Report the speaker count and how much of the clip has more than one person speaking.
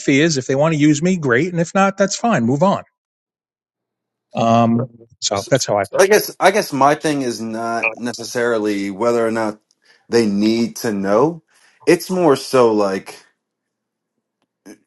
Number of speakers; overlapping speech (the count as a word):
two, about 2%